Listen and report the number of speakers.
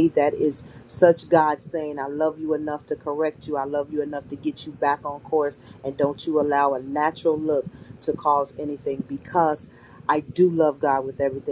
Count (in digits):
1